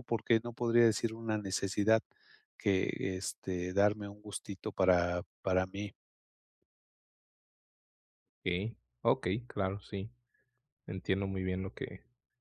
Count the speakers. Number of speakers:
2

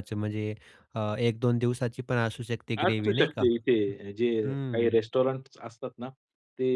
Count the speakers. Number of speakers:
2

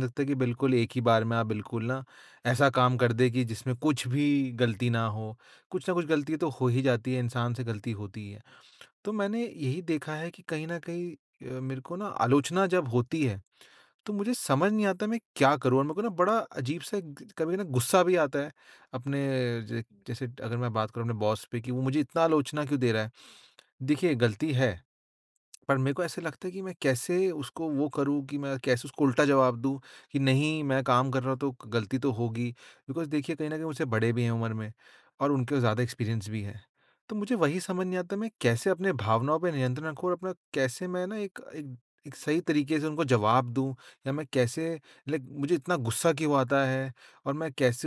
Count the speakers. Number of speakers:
1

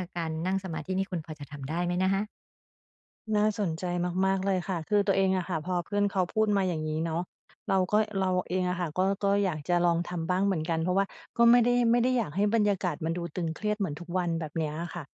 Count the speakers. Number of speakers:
2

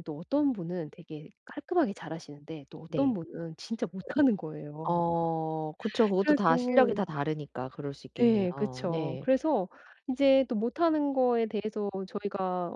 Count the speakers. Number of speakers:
2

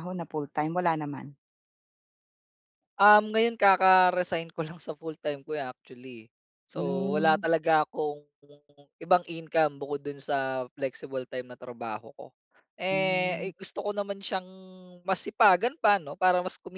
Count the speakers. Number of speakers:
2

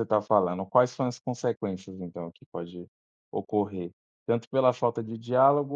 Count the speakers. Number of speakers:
1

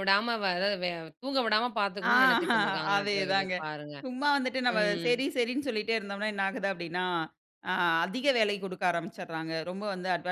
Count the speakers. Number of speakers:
2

